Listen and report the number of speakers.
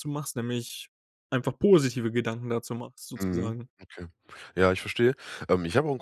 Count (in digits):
2